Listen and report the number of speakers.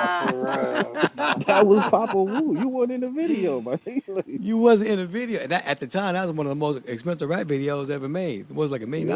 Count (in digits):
3